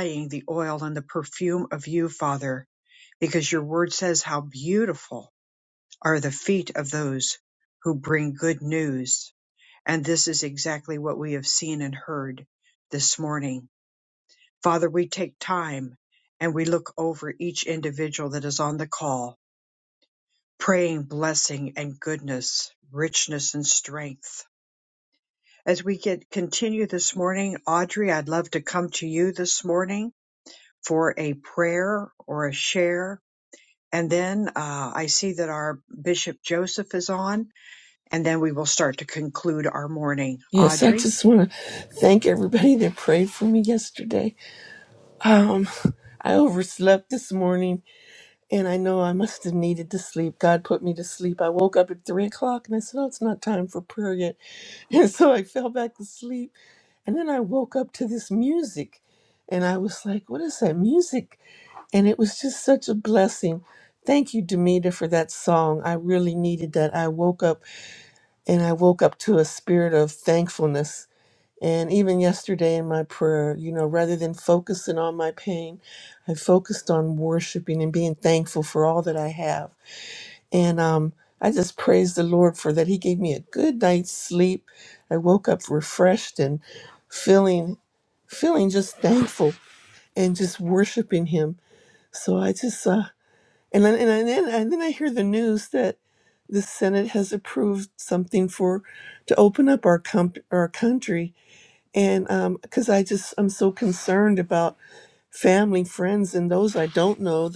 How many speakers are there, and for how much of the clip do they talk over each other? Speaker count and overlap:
2, about 1%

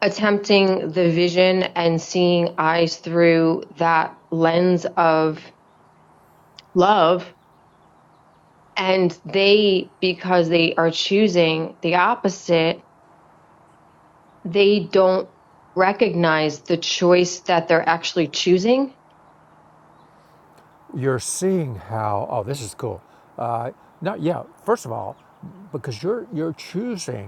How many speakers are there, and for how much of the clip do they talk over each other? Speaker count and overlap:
2, no overlap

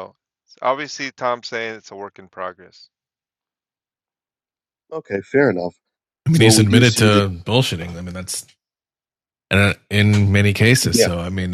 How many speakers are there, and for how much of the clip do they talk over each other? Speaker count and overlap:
3, about 10%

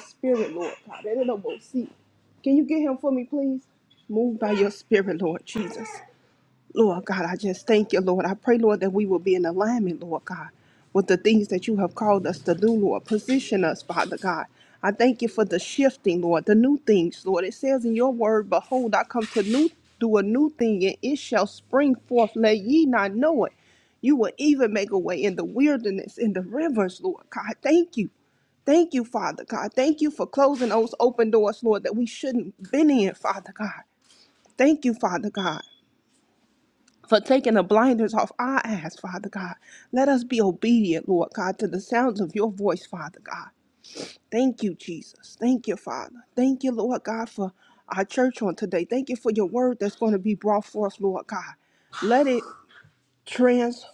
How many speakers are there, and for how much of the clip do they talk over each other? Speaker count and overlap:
1, no overlap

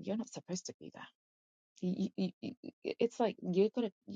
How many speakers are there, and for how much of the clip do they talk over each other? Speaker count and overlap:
1, no overlap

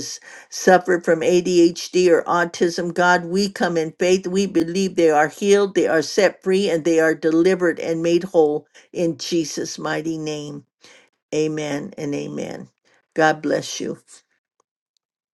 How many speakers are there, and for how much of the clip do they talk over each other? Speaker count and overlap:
1, no overlap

